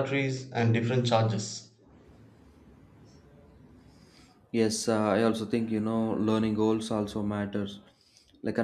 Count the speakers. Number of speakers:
two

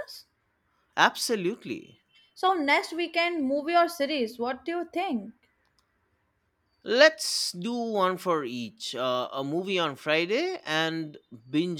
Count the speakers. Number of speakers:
two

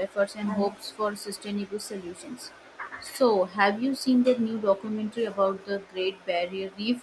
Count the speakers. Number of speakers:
one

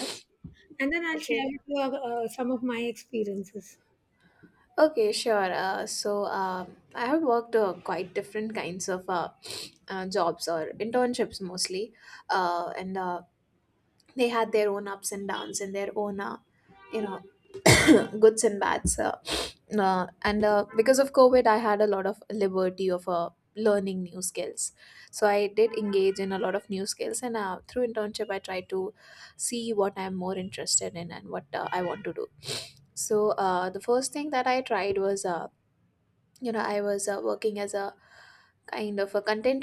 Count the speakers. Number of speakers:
two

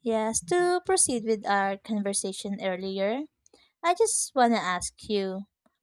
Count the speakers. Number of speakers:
one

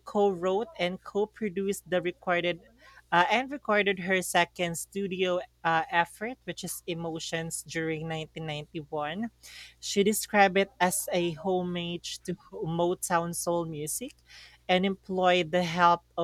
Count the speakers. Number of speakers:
one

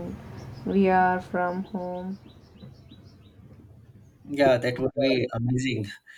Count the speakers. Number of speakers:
two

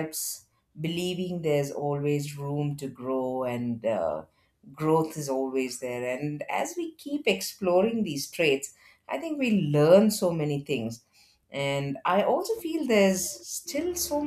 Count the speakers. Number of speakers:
one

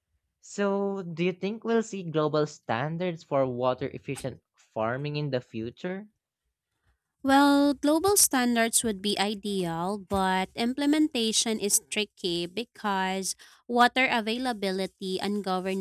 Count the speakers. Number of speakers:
two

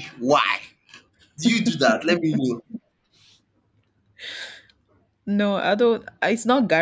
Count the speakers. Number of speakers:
two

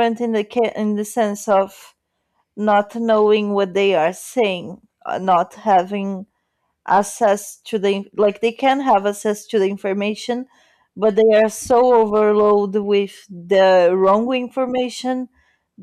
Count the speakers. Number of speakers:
one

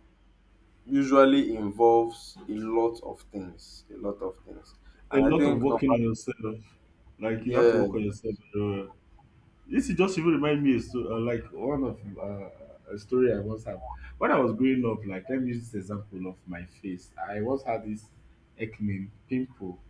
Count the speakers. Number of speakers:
two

